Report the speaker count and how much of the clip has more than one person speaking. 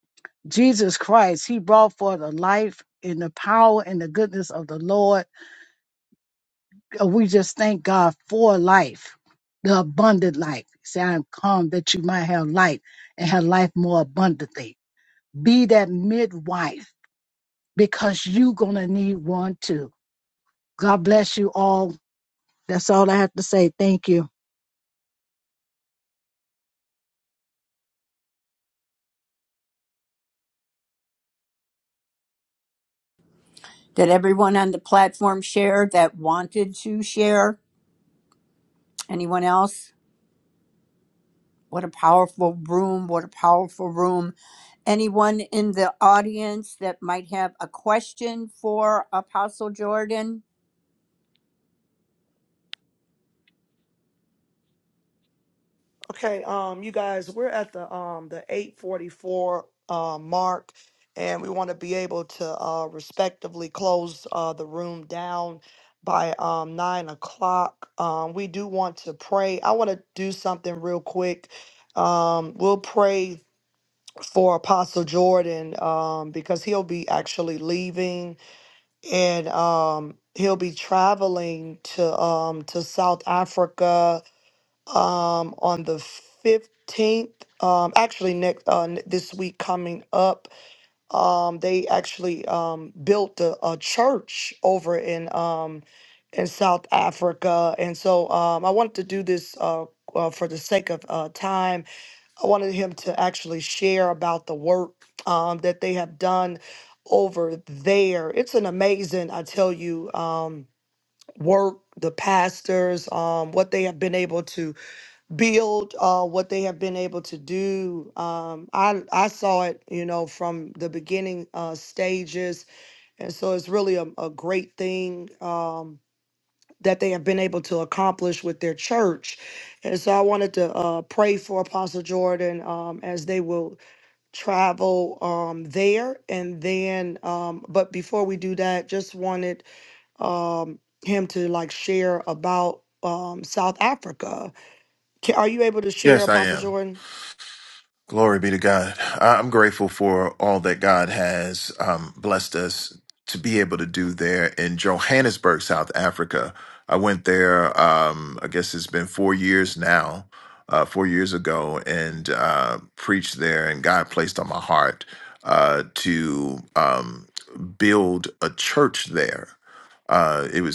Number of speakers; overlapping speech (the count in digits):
4, under 1%